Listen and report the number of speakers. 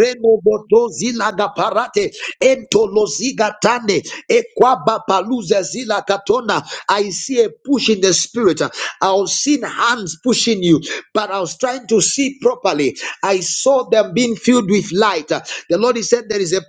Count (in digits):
1